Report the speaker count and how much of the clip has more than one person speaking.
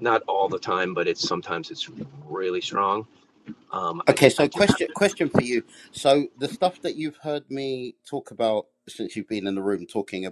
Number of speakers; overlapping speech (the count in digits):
2, about 7%